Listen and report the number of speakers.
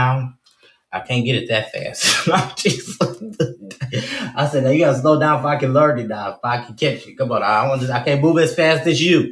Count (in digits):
1